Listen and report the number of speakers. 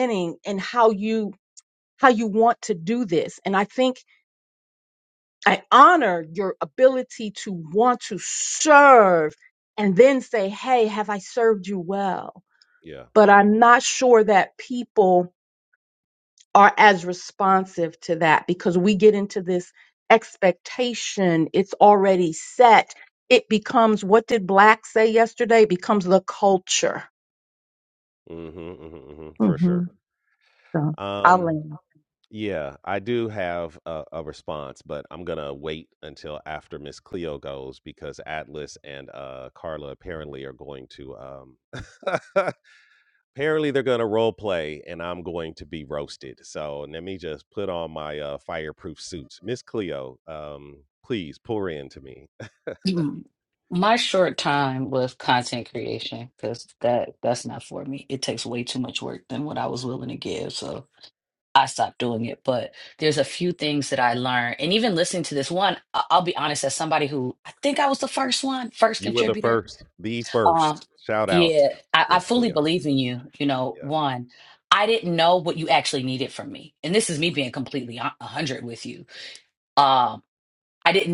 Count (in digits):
3